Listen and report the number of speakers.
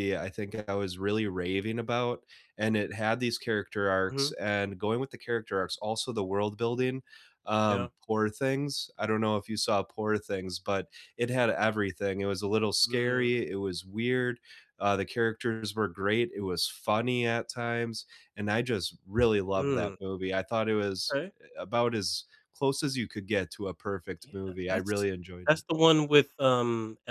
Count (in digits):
2